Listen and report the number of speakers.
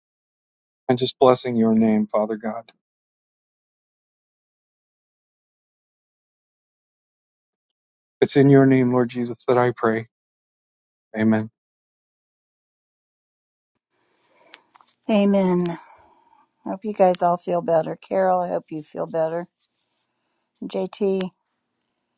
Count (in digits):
2